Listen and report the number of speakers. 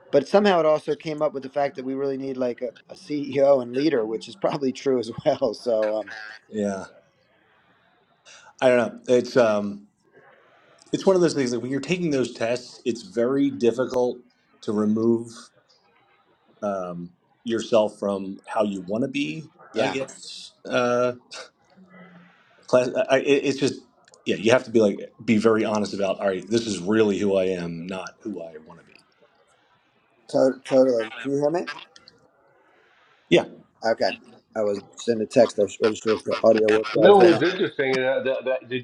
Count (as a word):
three